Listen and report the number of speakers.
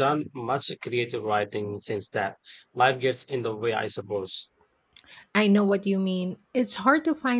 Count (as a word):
two